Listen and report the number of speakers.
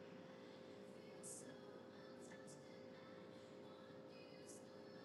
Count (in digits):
0